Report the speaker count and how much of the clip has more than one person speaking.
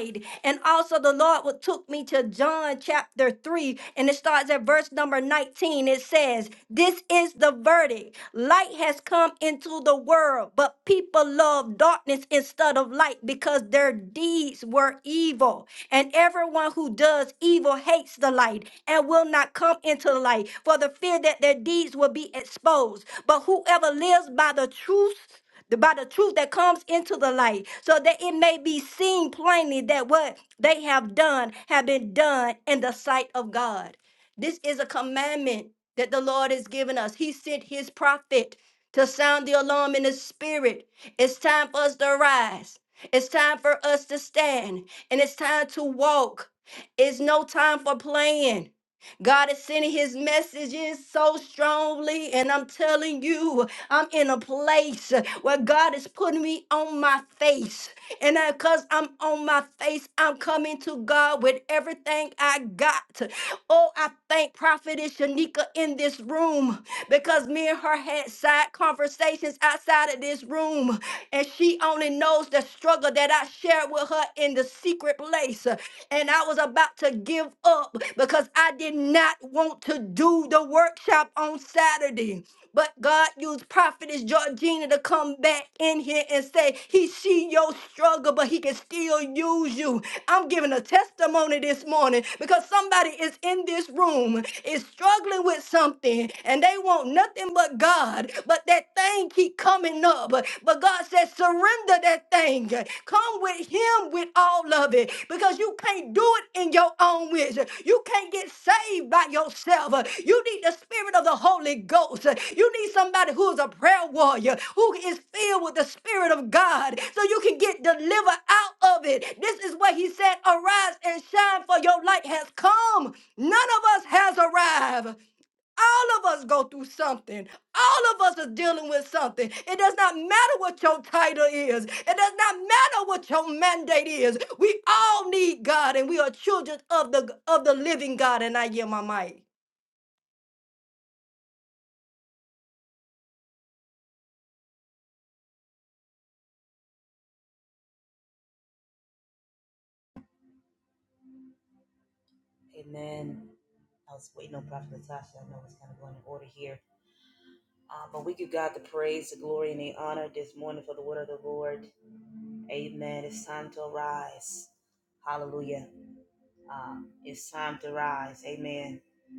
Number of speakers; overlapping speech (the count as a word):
two, no overlap